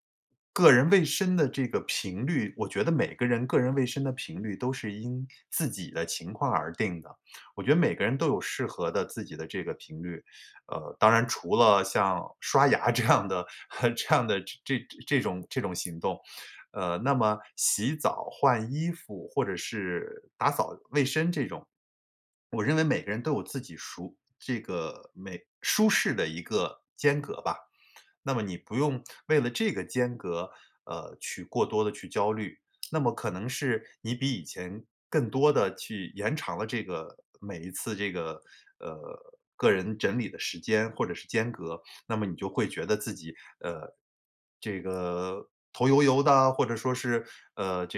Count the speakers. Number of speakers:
1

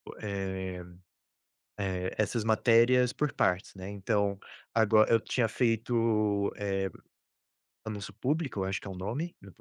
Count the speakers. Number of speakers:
1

